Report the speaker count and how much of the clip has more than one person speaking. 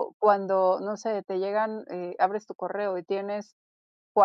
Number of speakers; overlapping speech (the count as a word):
one, no overlap